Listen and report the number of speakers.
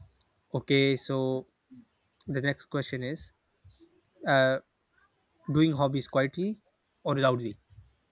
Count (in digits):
1